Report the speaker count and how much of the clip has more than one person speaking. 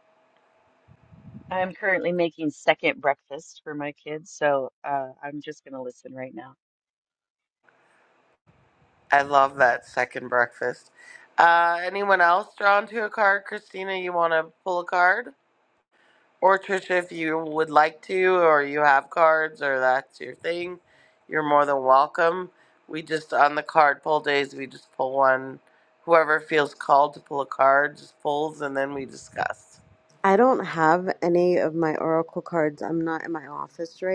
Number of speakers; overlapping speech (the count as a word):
three, no overlap